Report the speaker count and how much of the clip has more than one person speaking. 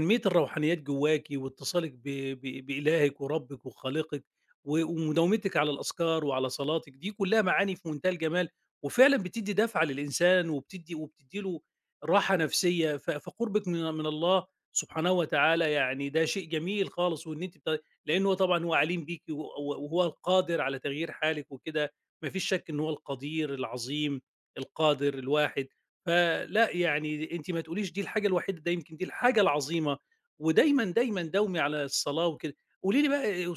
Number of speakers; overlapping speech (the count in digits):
1, no overlap